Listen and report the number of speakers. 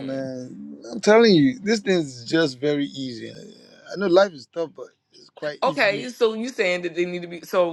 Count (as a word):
two